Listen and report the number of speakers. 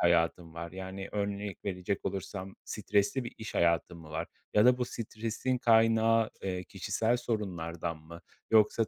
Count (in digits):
1